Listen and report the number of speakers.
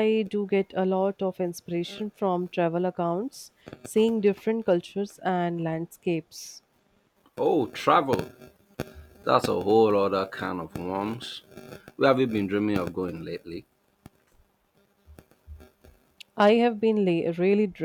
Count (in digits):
2